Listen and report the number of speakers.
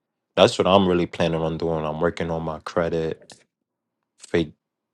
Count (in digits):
1